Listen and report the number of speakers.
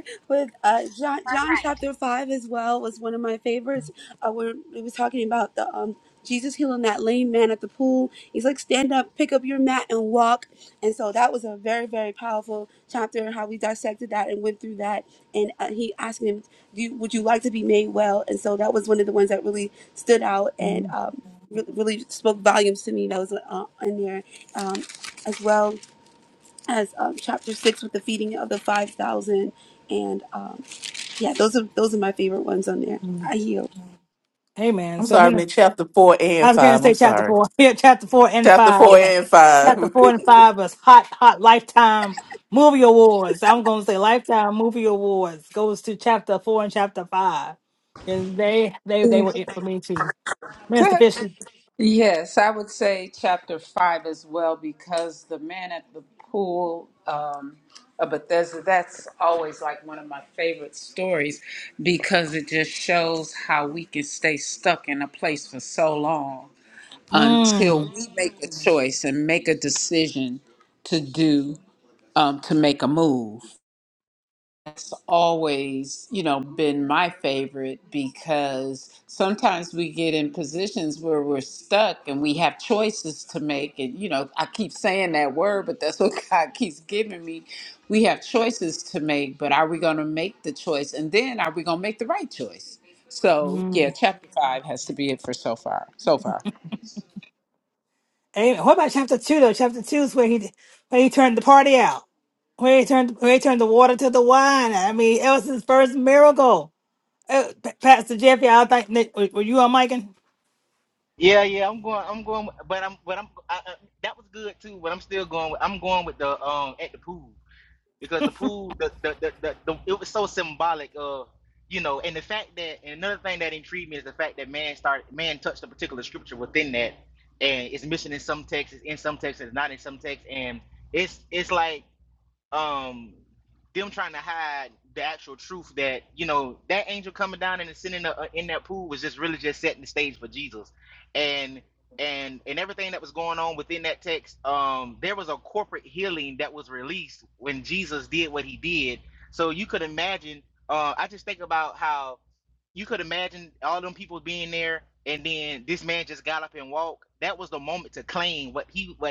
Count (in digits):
5